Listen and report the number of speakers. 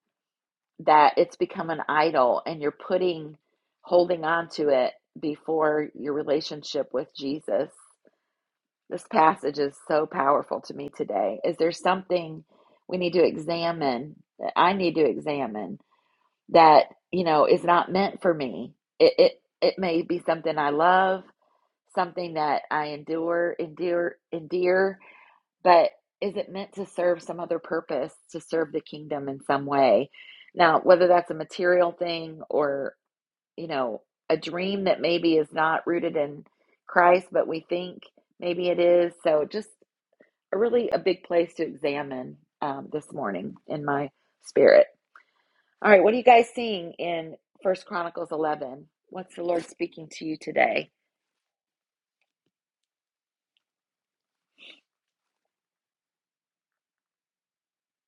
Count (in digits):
1